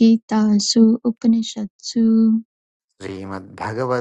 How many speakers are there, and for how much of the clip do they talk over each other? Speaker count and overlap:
two, no overlap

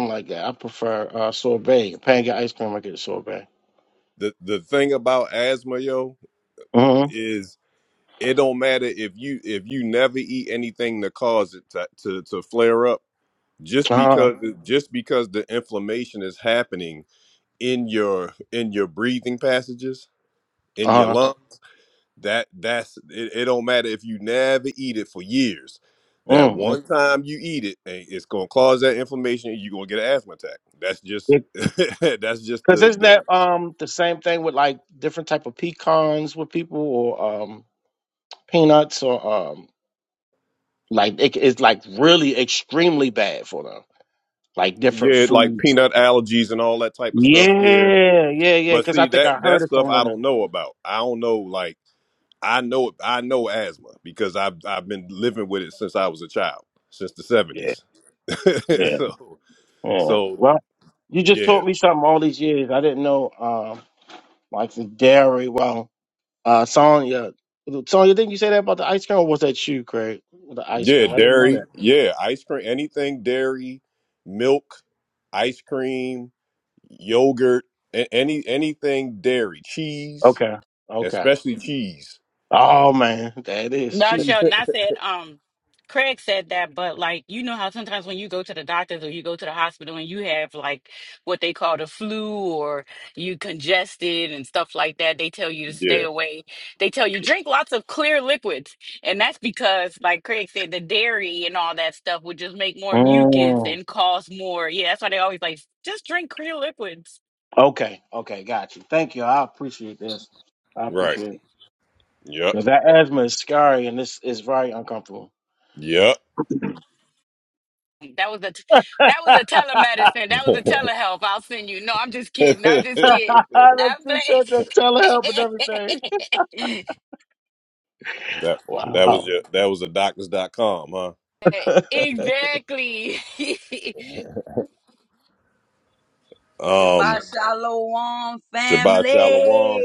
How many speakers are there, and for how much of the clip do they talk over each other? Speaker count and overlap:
four, about 8%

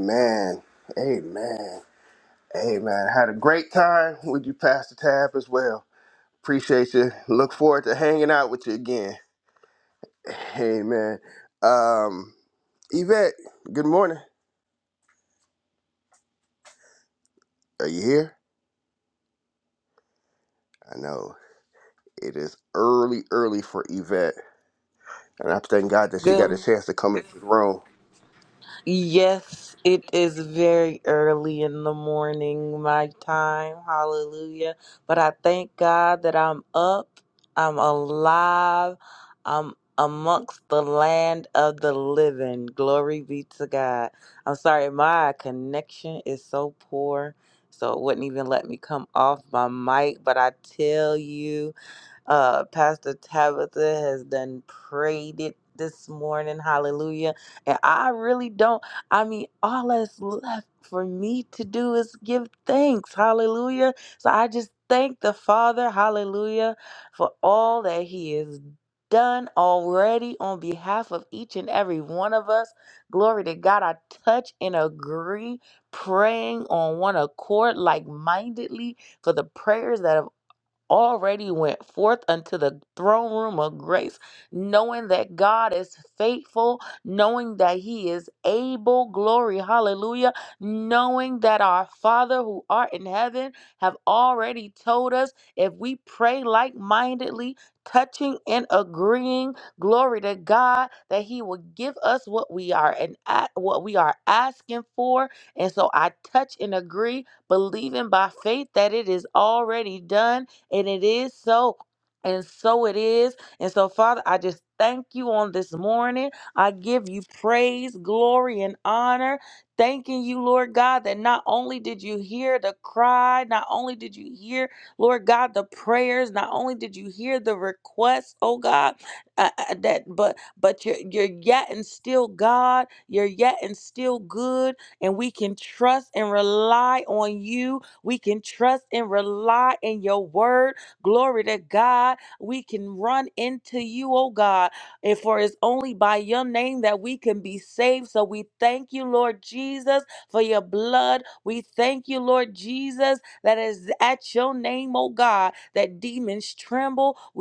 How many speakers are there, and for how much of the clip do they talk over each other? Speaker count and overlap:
two, under 1%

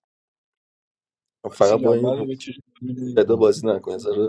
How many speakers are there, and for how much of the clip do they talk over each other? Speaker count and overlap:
two, about 23%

